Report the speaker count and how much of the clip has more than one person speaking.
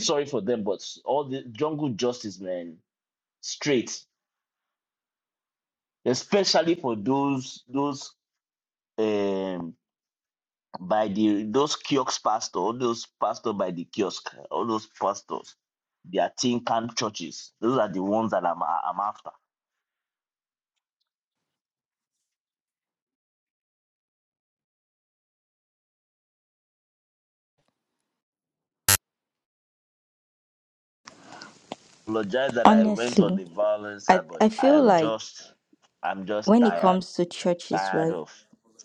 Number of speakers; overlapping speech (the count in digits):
2, about 7%